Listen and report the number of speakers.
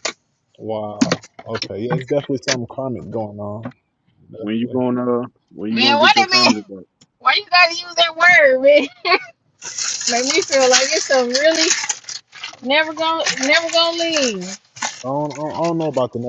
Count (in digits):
3